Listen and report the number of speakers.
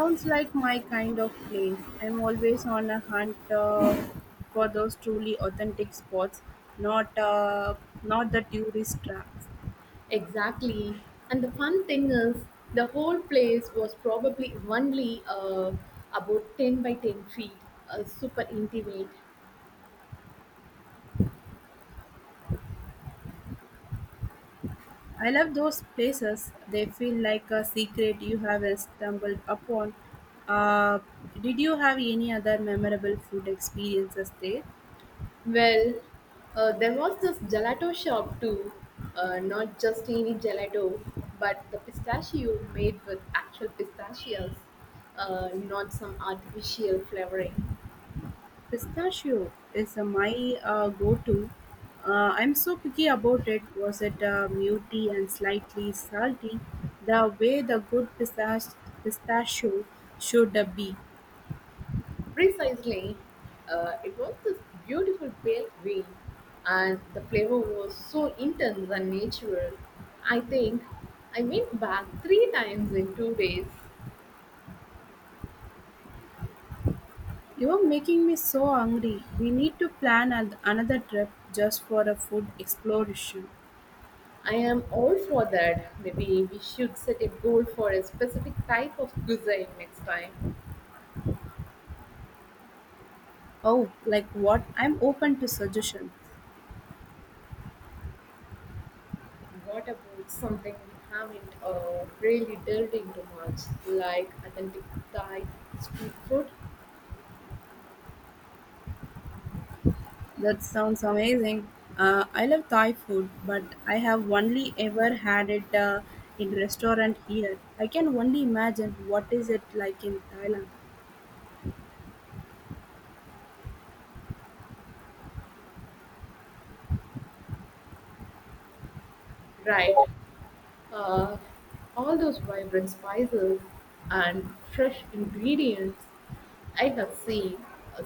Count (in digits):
2